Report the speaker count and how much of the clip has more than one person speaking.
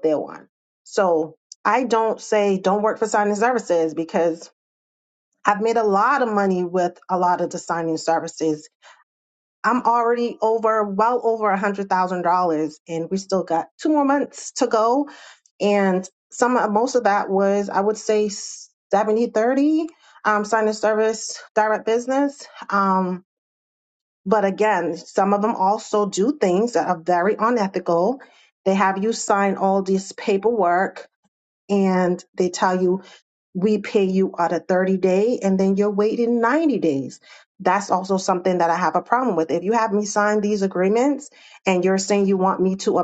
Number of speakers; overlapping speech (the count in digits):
1, no overlap